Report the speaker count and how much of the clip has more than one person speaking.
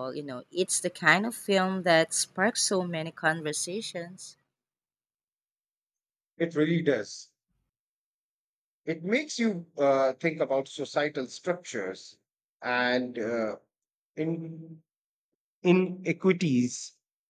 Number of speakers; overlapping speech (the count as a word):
two, no overlap